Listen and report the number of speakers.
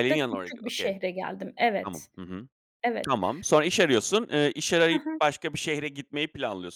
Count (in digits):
2